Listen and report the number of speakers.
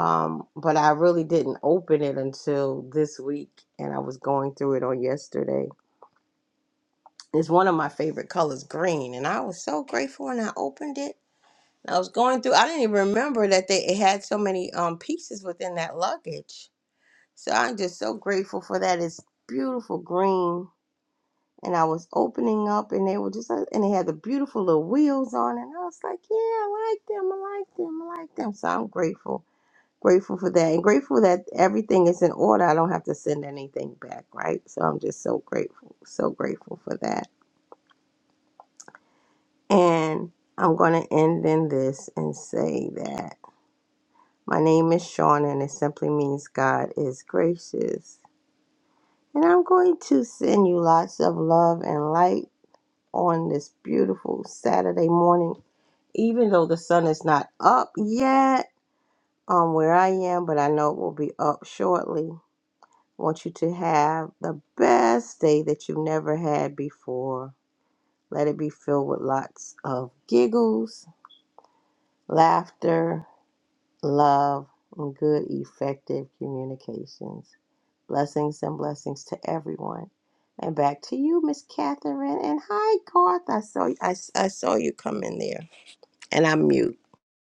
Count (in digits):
1